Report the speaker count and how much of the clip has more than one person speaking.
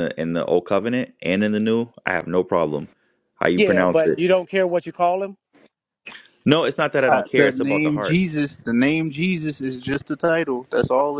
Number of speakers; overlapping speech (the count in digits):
3, about 15%